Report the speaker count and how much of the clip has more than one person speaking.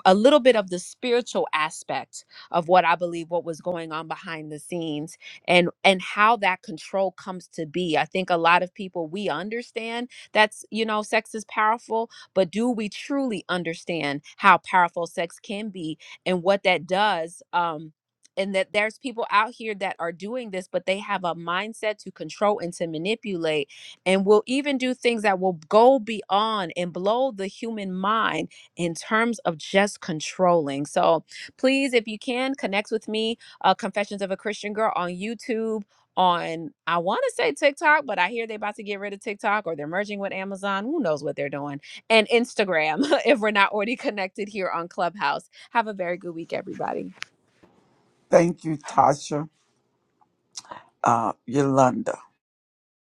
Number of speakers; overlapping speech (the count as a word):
two, no overlap